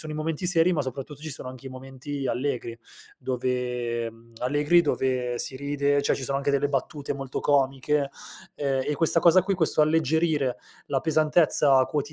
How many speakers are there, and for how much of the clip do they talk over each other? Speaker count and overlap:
one, no overlap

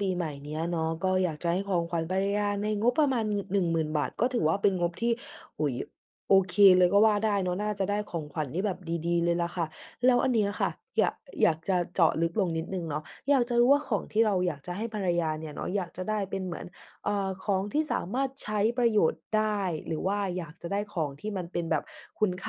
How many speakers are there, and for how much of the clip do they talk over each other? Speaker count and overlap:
one, no overlap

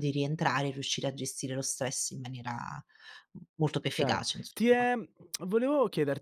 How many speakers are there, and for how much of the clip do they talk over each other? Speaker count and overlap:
two, about 8%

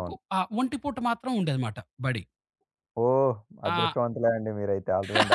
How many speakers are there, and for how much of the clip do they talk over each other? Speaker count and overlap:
two, about 8%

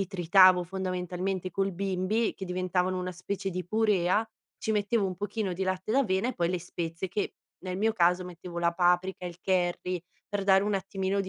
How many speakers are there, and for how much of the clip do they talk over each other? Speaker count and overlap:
one, no overlap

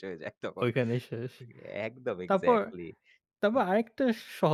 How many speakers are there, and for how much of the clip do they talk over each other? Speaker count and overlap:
two, about 11%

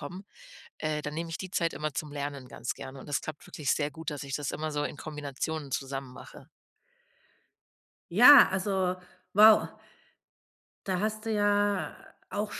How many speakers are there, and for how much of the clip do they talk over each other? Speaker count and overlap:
two, no overlap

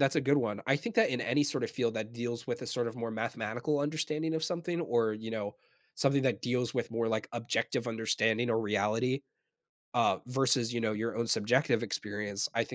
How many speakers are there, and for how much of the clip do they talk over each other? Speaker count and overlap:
one, no overlap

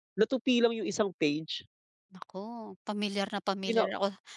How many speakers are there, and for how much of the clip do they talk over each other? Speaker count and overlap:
two, about 6%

